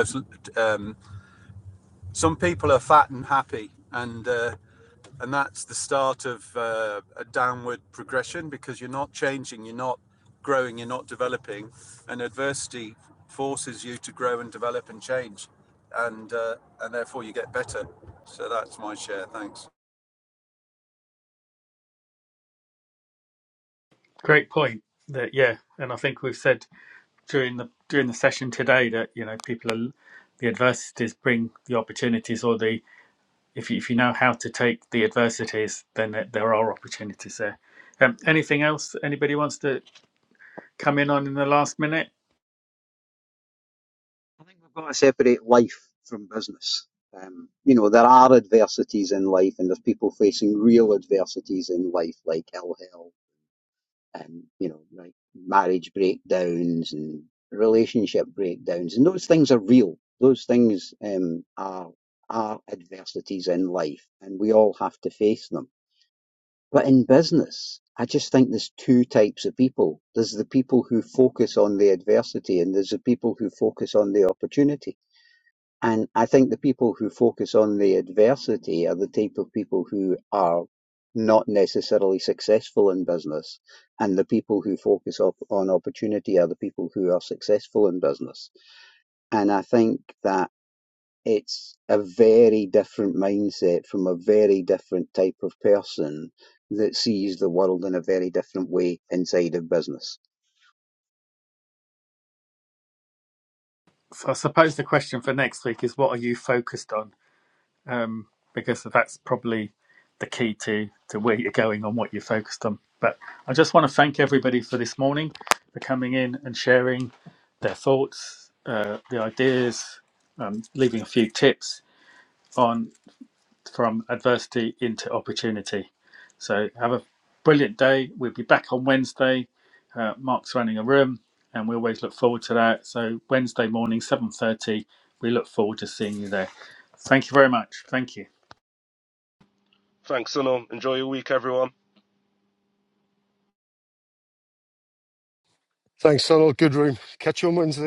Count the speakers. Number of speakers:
five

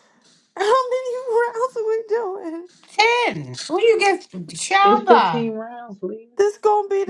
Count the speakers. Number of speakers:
three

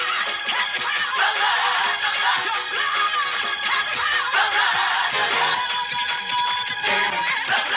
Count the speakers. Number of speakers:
zero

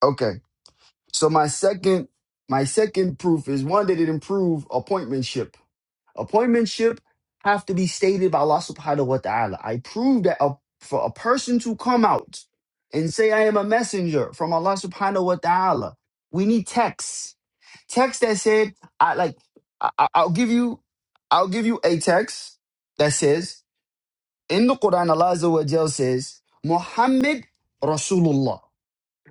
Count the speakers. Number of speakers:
one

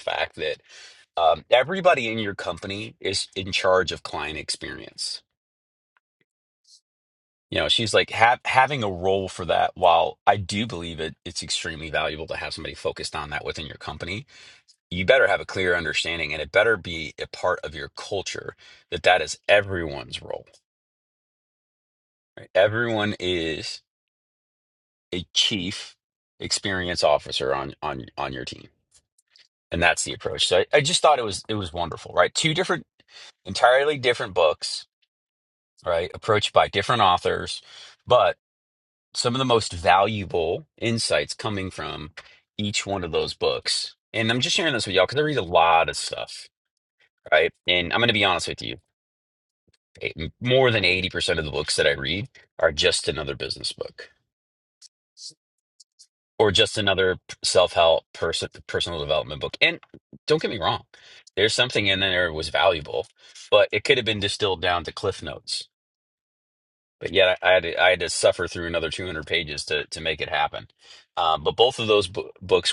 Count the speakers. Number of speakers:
one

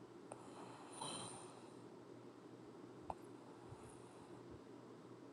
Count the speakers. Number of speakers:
zero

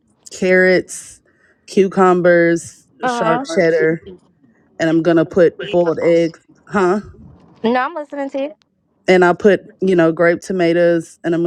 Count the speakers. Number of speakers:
two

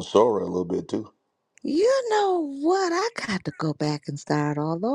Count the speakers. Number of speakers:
two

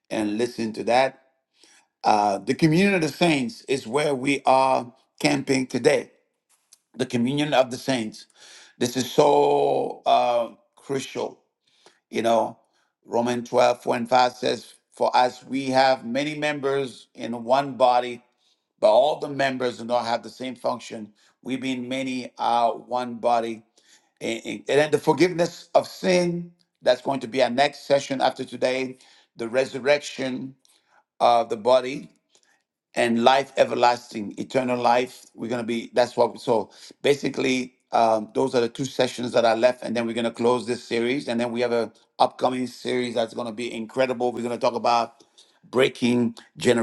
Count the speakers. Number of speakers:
one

